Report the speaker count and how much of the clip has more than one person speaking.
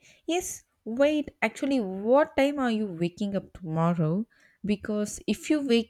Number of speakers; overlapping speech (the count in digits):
1, no overlap